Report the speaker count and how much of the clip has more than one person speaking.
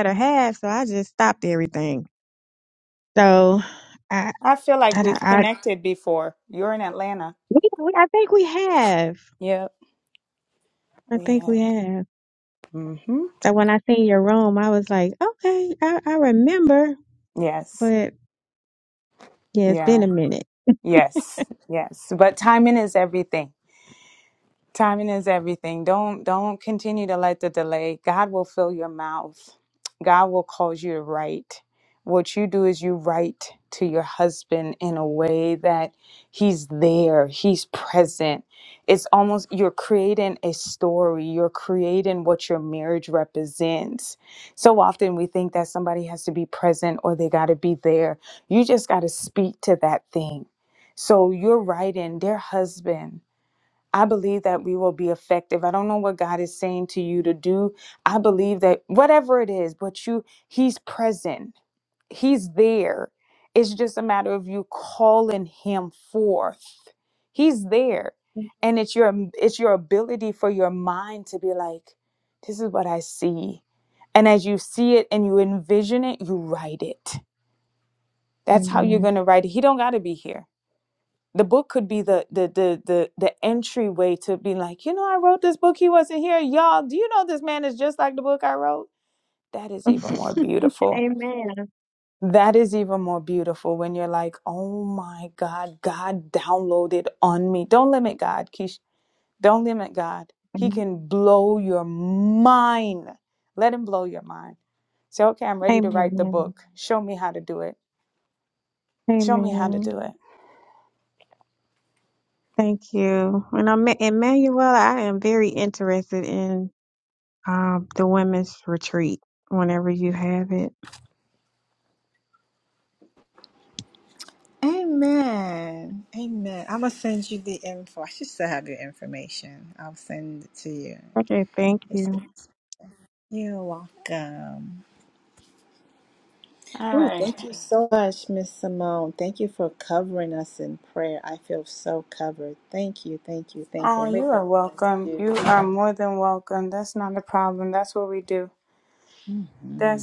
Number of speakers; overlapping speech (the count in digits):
3, about 4%